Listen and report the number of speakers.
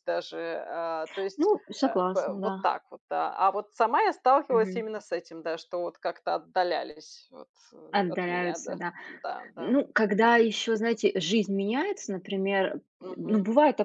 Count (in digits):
2